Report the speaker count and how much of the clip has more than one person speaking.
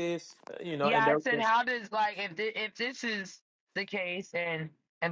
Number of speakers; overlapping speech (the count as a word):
two, about 11%